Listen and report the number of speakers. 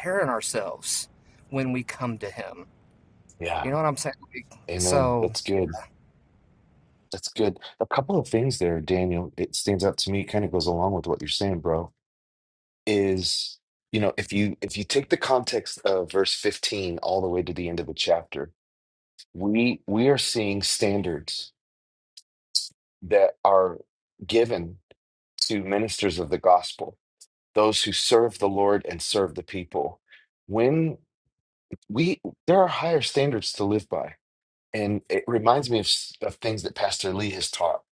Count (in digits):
2